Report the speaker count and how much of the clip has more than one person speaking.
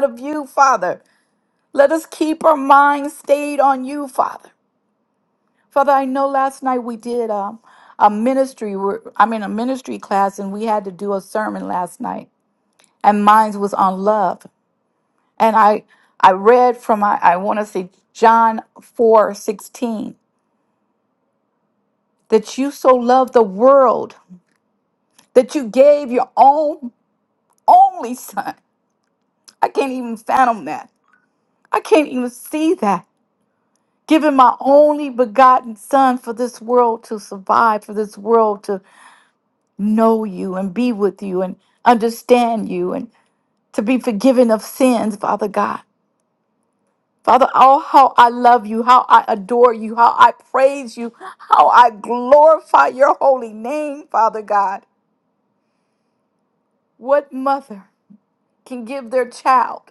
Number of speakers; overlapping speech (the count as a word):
one, no overlap